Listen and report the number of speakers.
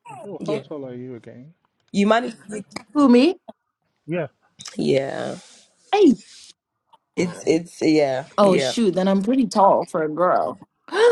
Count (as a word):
three